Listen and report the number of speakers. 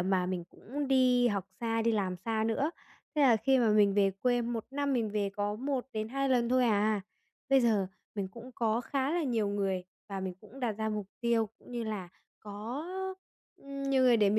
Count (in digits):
1